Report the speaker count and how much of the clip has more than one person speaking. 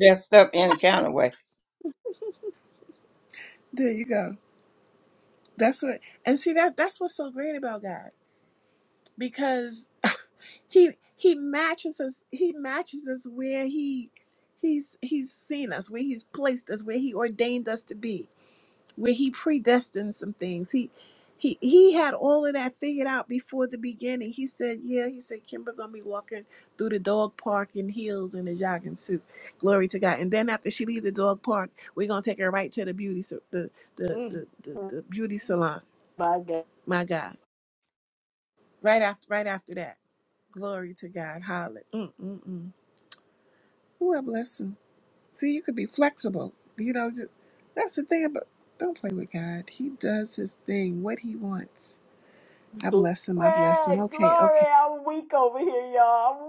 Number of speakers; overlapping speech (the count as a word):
three, about 3%